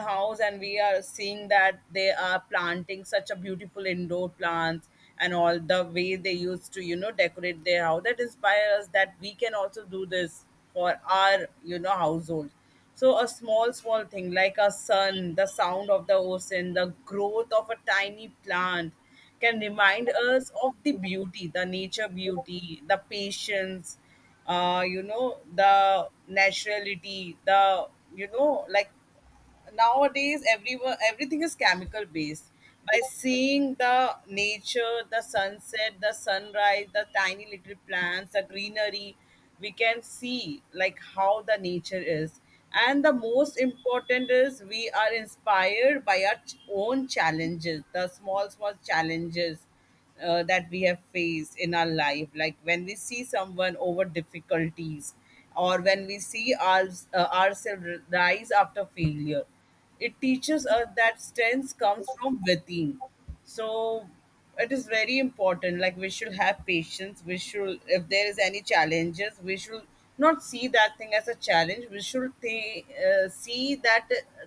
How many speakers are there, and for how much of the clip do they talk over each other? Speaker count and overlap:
1, no overlap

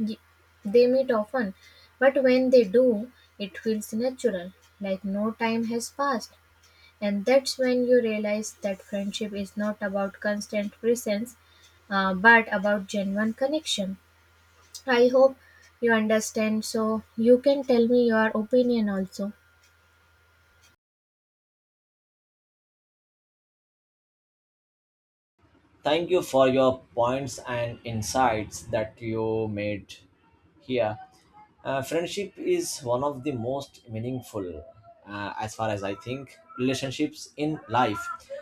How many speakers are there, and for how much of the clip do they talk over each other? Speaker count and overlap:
2, no overlap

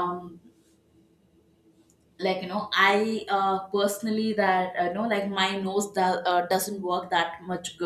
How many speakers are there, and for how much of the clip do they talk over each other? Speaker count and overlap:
1, no overlap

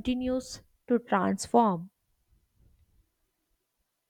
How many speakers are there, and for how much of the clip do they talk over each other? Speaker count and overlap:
1, no overlap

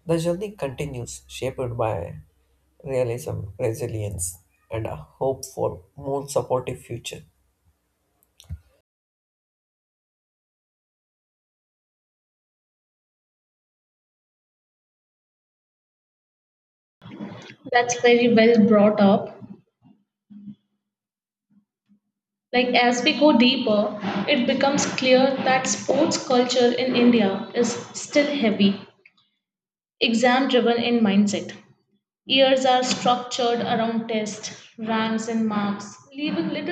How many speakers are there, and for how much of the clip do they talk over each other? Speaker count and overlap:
2, no overlap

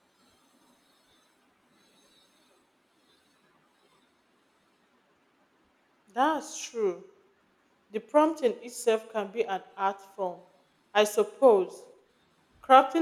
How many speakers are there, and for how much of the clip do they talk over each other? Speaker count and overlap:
1, no overlap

